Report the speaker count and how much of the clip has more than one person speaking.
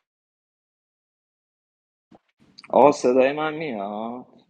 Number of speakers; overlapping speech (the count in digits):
1, no overlap